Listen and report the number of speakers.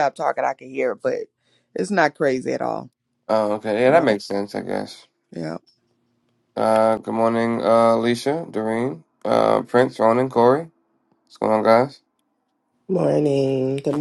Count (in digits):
3